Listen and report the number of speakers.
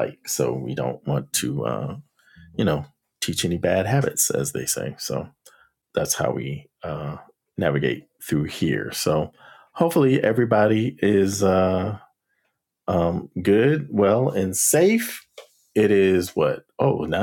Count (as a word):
one